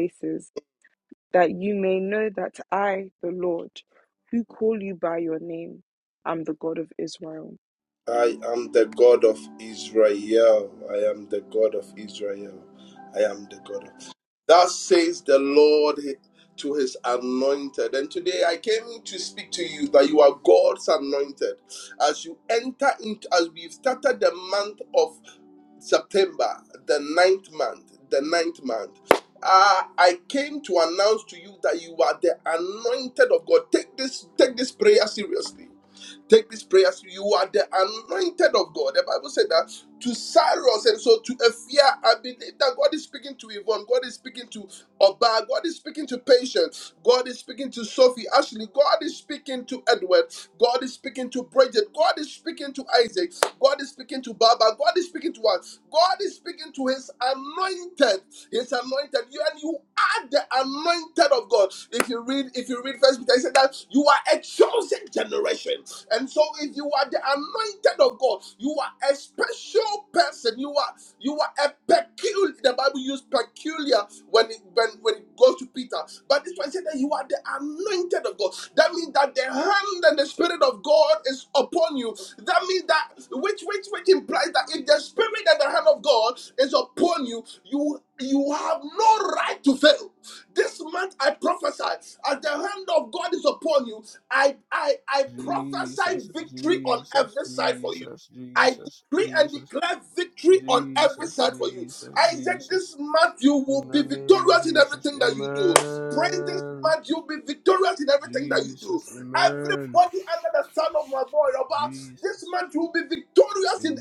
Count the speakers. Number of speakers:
3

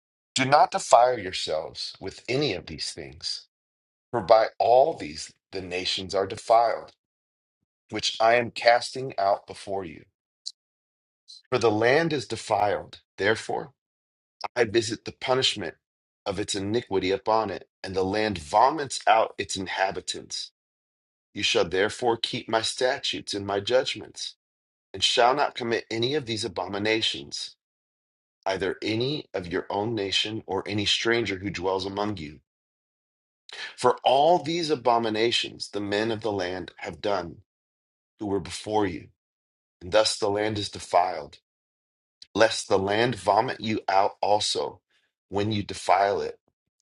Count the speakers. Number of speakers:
1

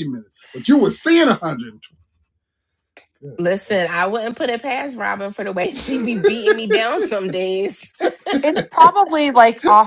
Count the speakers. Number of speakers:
3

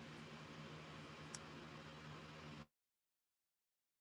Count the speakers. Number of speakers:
0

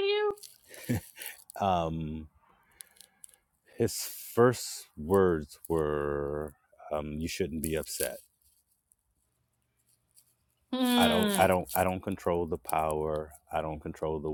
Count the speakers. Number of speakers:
2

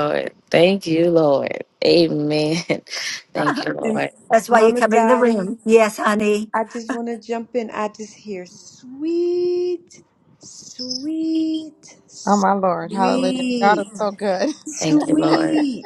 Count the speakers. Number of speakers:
4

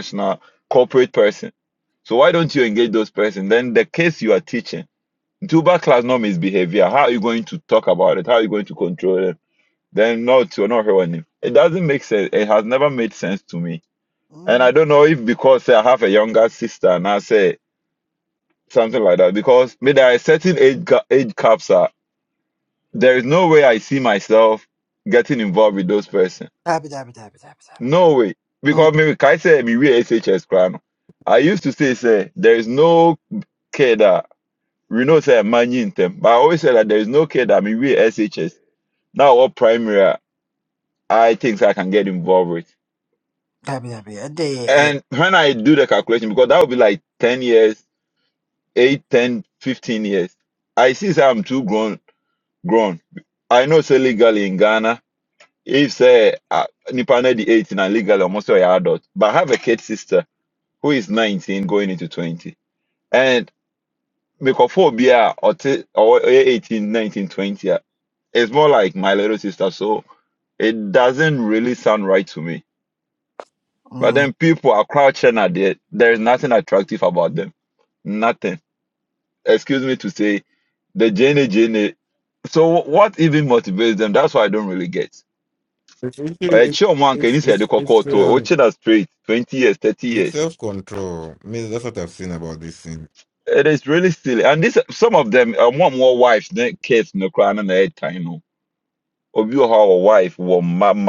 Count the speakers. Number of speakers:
3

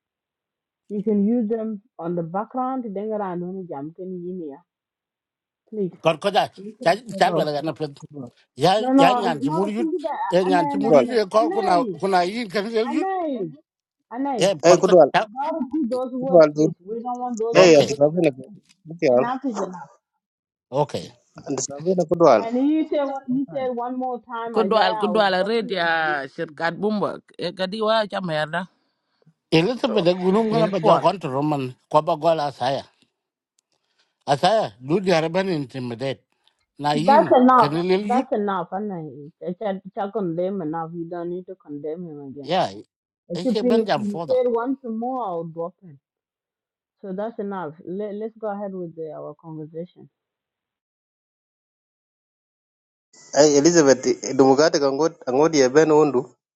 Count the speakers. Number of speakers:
4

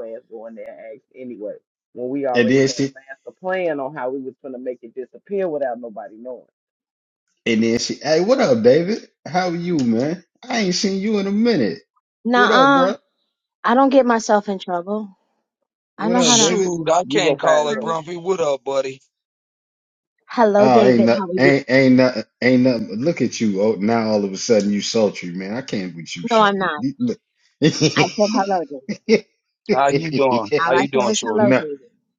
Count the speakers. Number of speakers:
4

